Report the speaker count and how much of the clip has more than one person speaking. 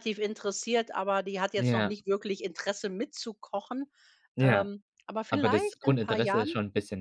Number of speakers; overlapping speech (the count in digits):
2, about 27%